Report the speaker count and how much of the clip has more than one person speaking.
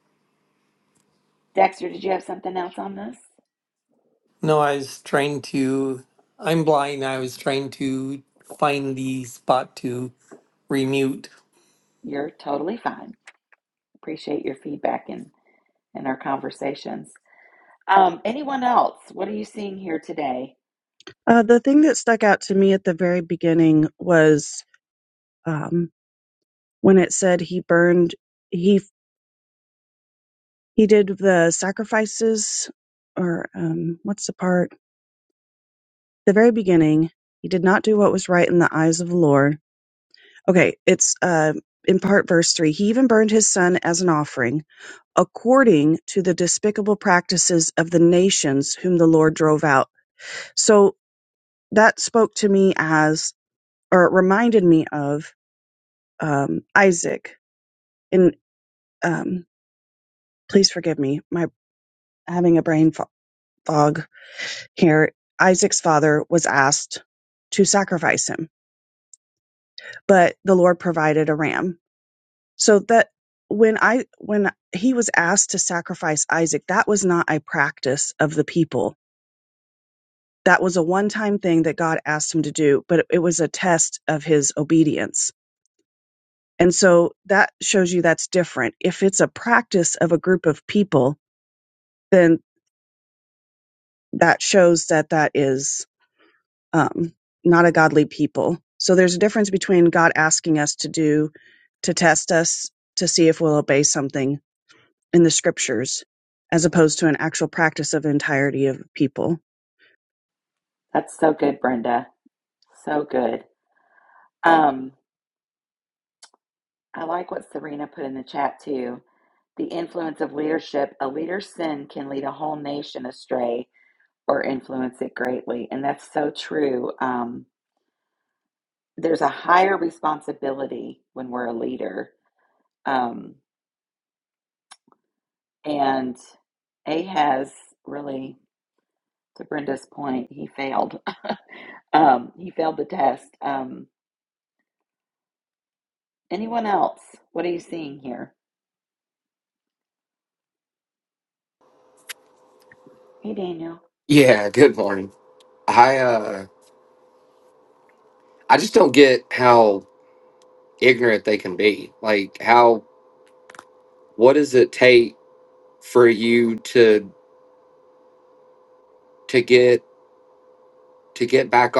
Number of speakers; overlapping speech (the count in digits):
4, no overlap